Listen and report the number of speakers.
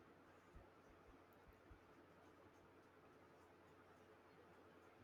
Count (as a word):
zero